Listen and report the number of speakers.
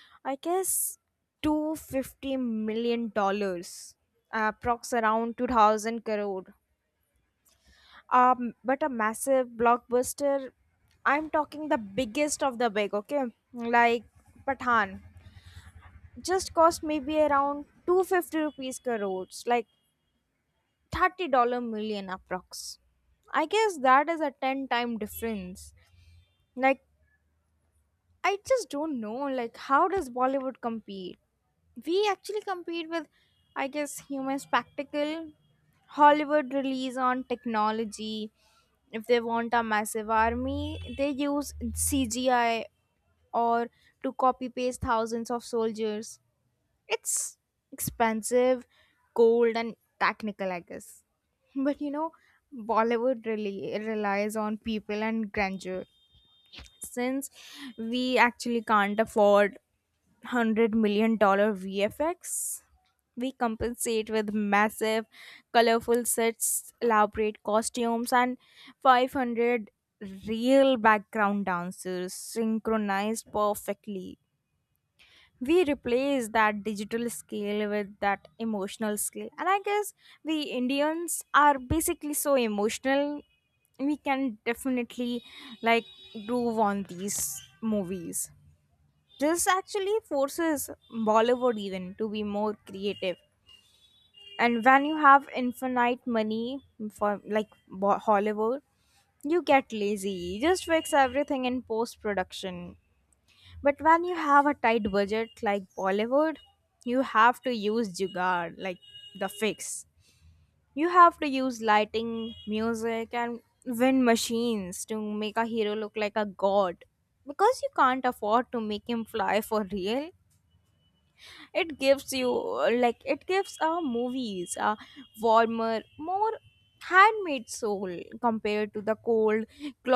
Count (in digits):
1